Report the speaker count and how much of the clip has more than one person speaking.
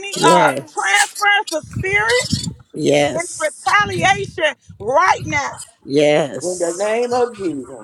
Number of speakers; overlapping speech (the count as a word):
three, about 23%